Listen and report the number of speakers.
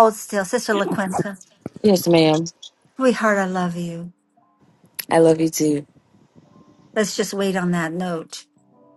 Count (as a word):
two